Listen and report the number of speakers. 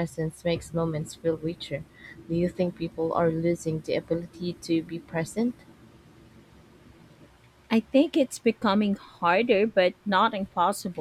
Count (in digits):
2